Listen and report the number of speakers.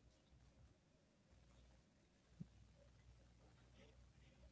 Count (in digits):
0